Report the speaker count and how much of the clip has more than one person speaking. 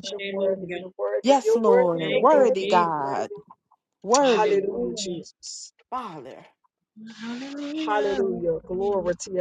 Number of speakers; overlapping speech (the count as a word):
three, about 48%